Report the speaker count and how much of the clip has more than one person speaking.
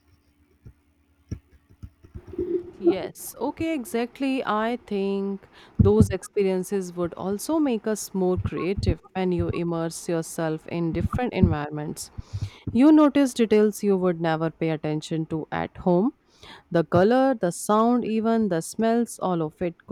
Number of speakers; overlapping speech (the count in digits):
1, no overlap